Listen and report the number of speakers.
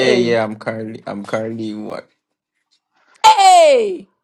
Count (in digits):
2